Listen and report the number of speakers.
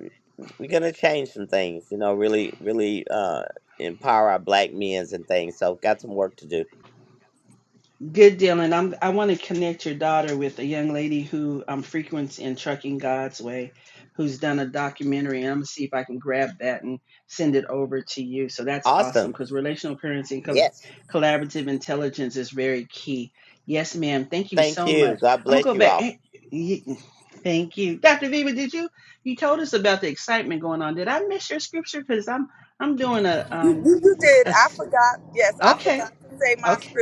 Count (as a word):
three